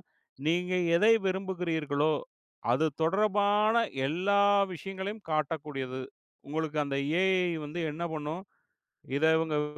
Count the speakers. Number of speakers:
one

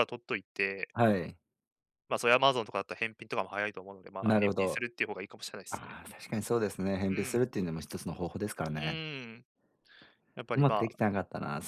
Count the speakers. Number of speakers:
two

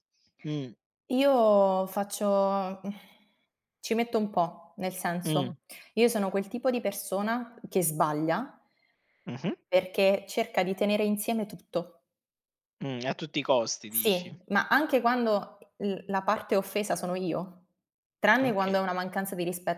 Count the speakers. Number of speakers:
two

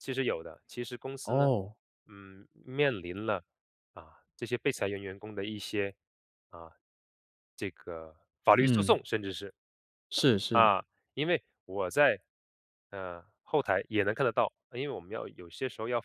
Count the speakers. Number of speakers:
two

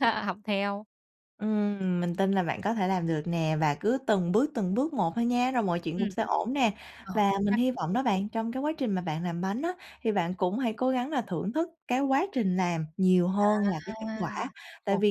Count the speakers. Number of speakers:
two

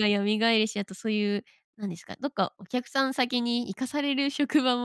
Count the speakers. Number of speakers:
one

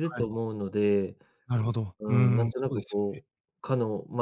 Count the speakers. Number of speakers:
two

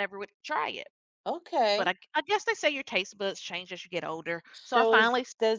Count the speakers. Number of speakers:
two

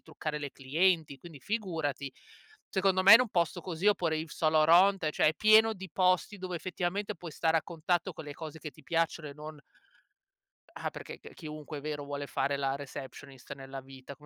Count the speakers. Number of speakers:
one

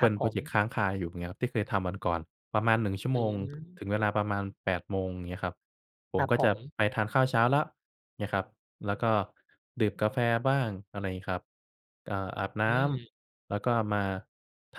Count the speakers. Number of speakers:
two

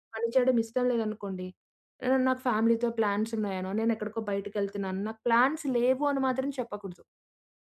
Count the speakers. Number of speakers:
one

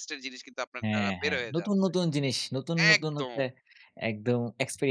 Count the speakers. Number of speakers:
two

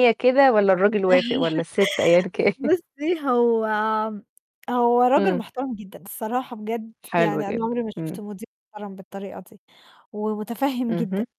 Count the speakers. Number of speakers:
two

